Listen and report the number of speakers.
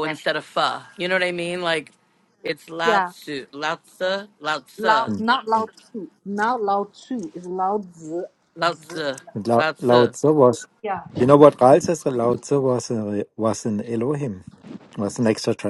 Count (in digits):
3